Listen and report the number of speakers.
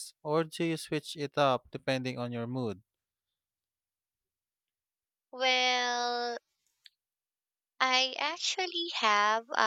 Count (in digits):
2